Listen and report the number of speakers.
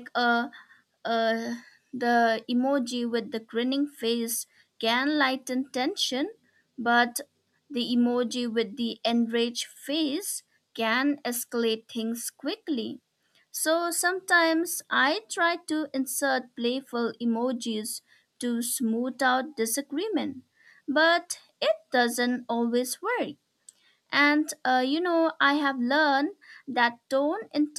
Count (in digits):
1